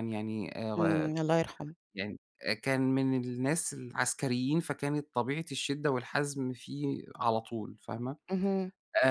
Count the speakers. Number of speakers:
two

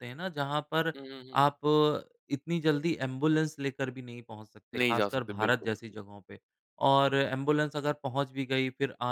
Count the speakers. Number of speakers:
two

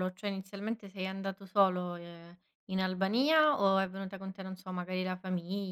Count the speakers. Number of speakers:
one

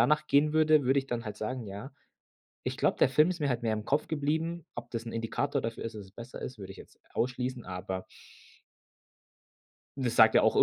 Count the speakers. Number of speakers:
one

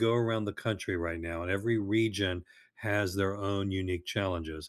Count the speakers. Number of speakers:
one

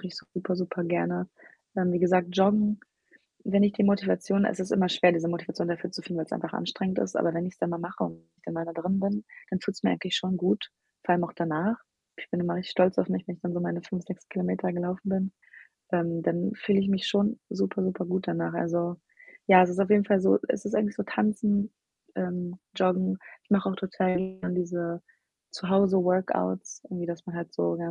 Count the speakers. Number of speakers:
one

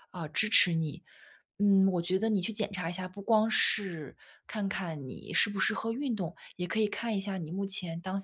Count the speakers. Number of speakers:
one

